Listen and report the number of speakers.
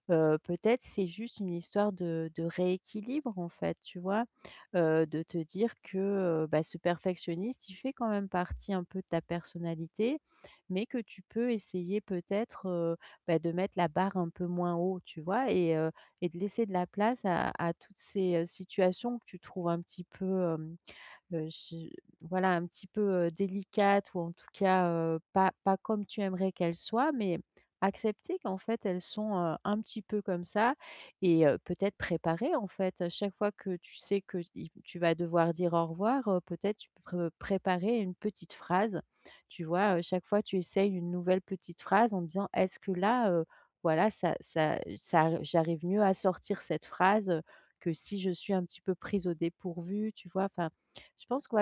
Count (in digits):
1